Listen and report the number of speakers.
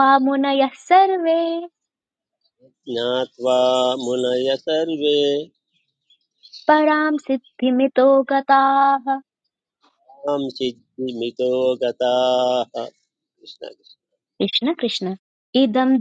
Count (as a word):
two